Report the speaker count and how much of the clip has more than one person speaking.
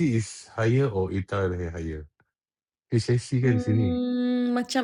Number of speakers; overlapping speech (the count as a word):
two, about 10%